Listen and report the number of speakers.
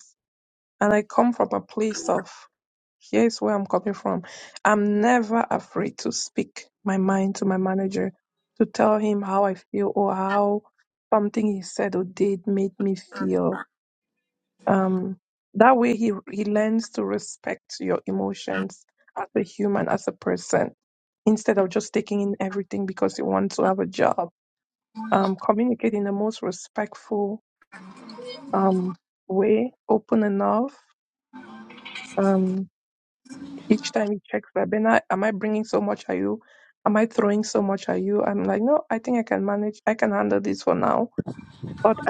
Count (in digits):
1